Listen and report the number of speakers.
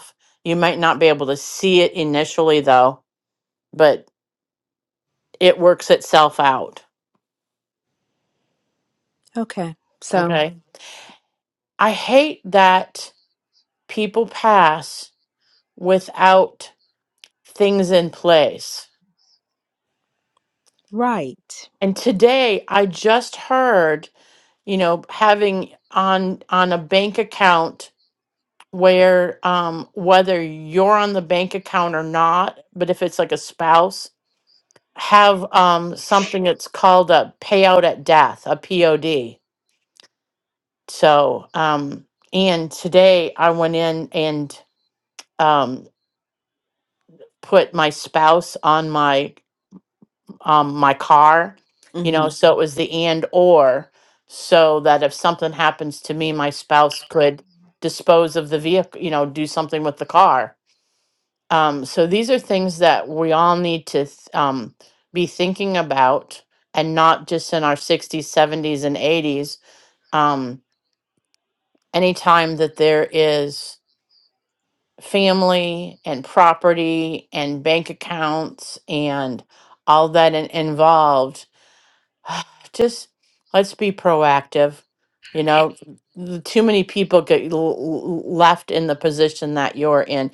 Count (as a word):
two